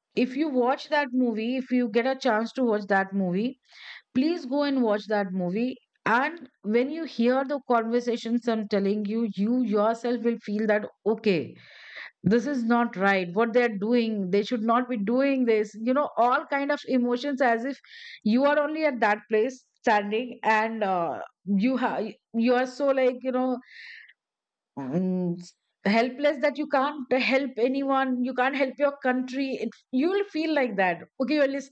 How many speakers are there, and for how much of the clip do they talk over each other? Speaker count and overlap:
1, no overlap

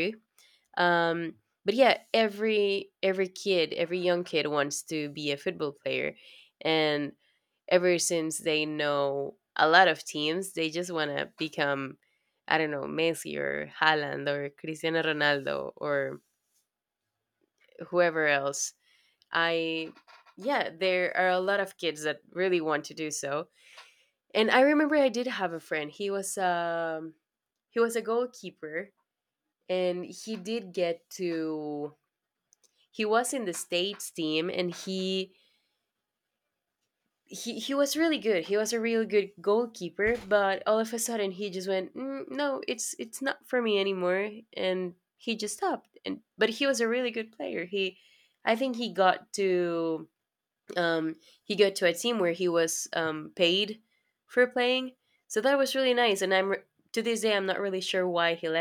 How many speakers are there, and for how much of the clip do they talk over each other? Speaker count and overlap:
1, no overlap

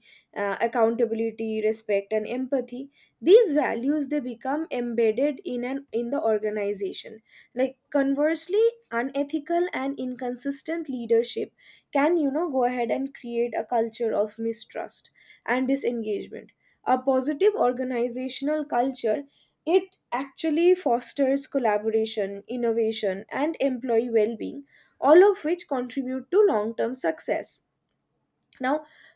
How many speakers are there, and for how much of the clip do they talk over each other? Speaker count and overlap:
1, no overlap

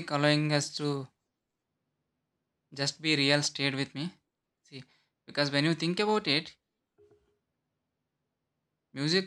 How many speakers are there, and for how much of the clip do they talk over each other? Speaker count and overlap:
1, no overlap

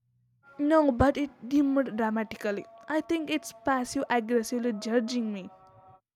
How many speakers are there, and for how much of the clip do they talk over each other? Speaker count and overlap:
1, no overlap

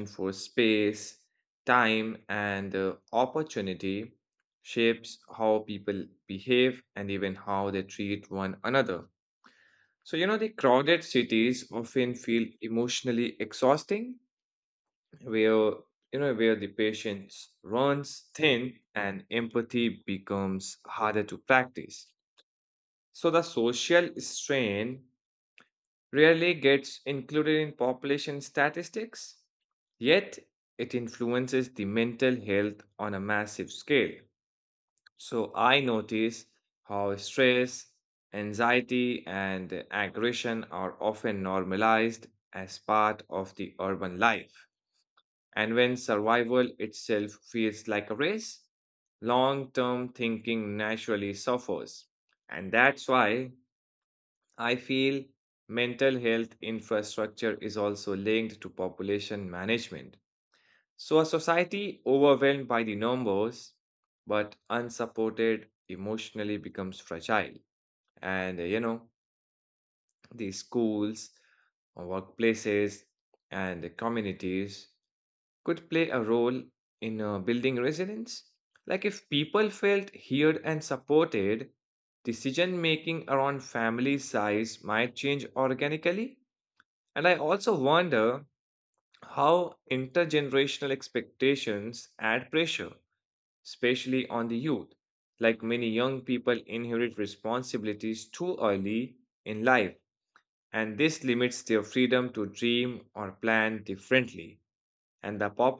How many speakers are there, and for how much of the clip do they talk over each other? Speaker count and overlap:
1, no overlap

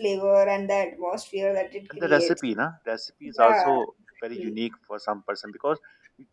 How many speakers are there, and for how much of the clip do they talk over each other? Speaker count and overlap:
2, about 19%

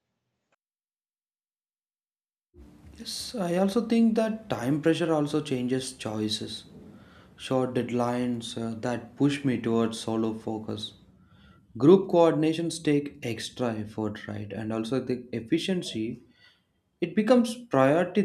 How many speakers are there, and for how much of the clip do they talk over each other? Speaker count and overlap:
1, no overlap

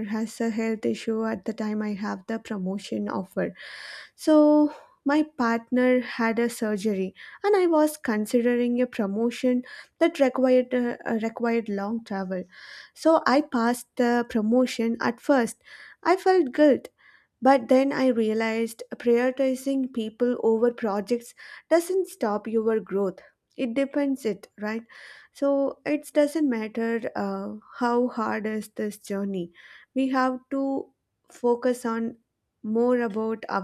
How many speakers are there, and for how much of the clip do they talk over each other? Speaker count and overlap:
1, no overlap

